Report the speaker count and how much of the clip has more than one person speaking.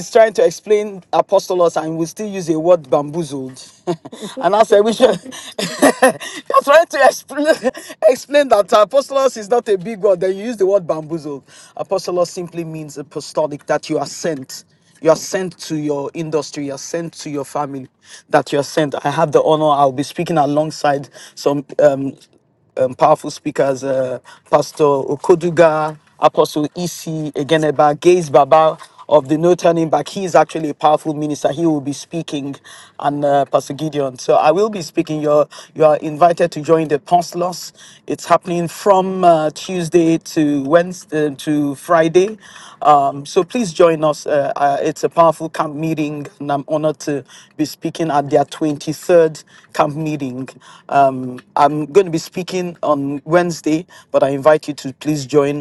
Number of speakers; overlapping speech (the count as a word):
one, no overlap